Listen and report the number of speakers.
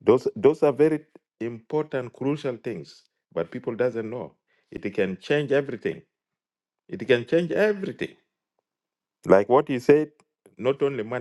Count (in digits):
1